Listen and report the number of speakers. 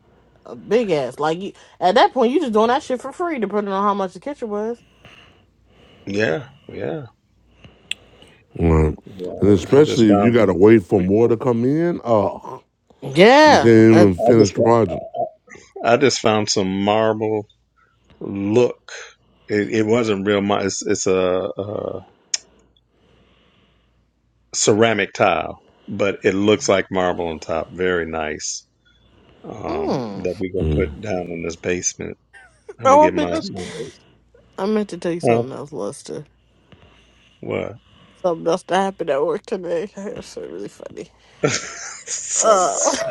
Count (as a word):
four